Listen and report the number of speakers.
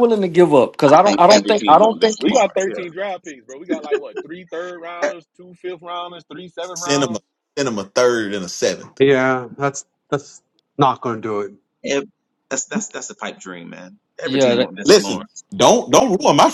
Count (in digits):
5